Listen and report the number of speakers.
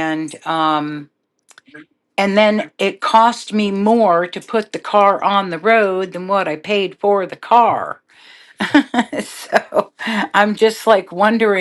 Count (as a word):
one